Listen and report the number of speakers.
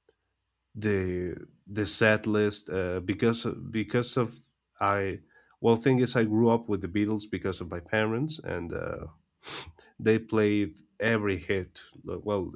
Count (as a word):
one